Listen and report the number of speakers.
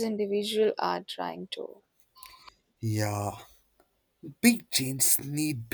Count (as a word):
two